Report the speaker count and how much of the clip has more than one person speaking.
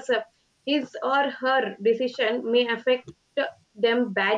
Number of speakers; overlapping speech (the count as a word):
one, no overlap